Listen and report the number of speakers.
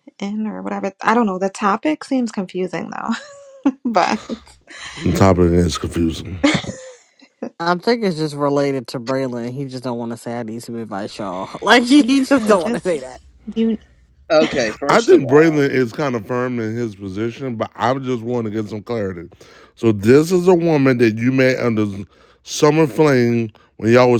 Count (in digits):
4